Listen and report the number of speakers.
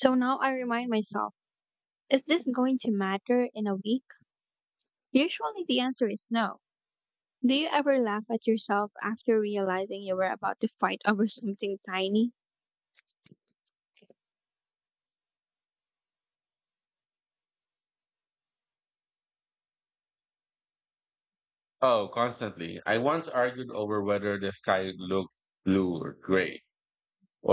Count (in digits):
2